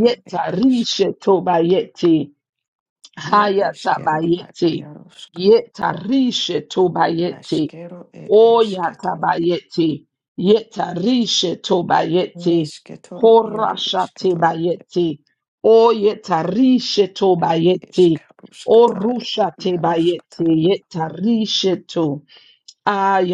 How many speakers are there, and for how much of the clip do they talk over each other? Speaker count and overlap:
2, about 35%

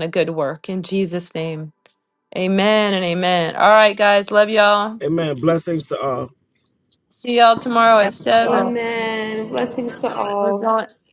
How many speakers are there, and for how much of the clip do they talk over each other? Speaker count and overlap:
3, about 5%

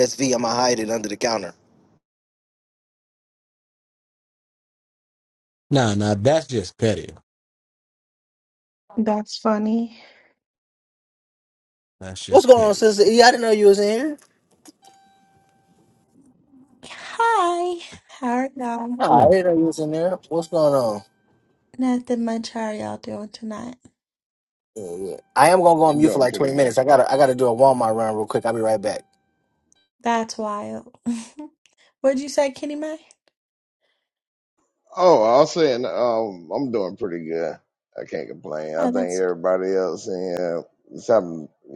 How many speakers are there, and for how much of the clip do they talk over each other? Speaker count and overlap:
4, about 4%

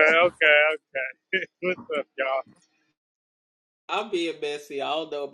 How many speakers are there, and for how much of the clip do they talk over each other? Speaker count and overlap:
2, no overlap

